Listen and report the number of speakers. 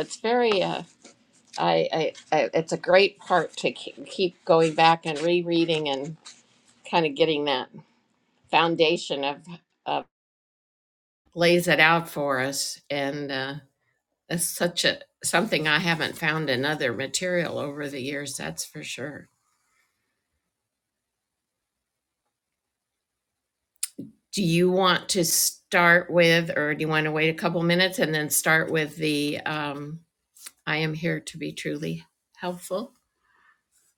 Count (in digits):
1